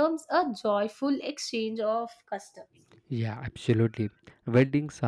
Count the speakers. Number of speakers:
two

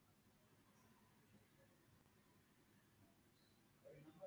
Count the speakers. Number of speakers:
zero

